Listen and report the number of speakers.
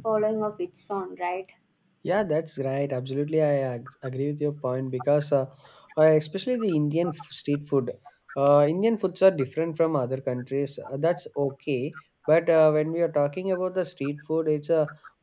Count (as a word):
two